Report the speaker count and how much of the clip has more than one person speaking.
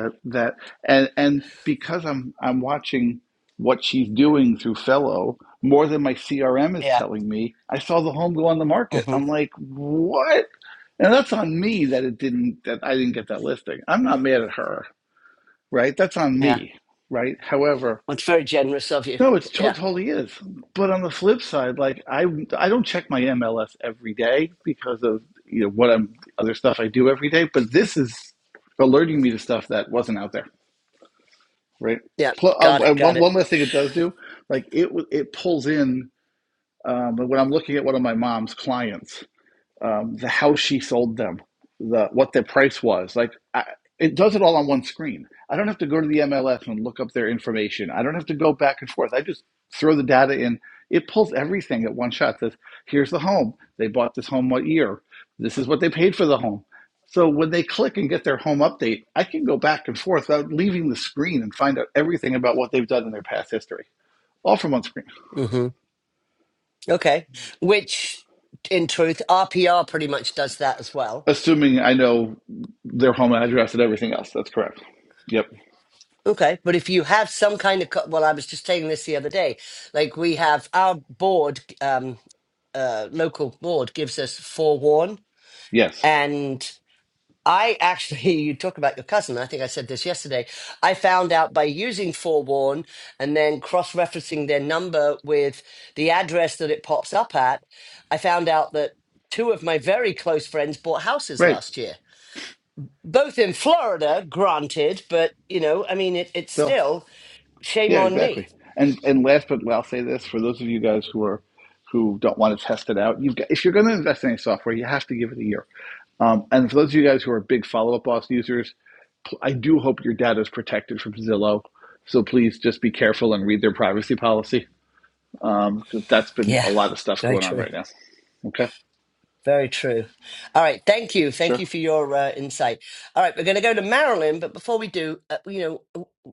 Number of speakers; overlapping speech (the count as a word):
two, about 3%